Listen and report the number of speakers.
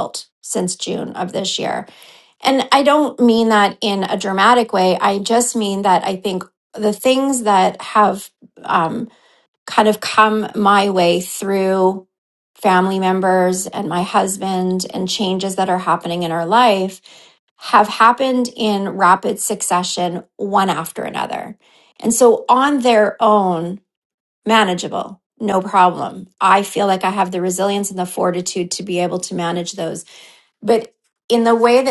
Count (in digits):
1